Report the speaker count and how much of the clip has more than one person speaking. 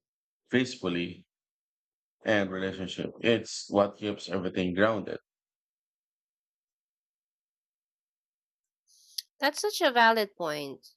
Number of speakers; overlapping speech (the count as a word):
two, no overlap